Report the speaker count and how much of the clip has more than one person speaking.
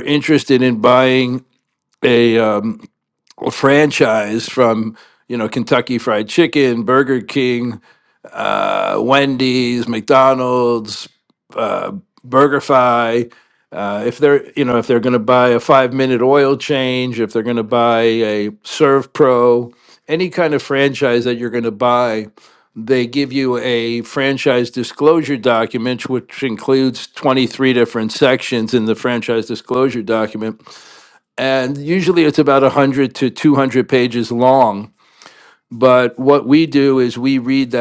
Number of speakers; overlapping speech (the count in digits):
1, no overlap